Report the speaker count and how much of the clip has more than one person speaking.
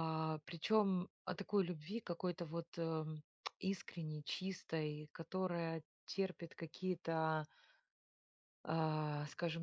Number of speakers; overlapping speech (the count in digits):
1, no overlap